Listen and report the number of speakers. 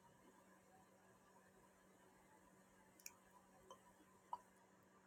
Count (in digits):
0